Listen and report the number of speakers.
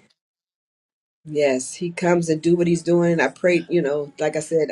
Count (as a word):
one